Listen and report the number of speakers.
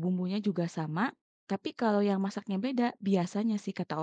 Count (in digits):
1